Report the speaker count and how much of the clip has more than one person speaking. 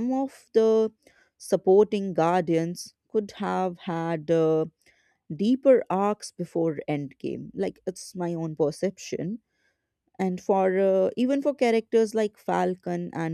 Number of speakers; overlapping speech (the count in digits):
1, no overlap